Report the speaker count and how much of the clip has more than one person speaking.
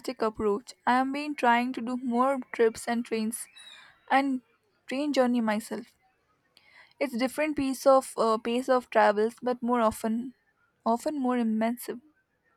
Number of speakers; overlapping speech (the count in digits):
1, no overlap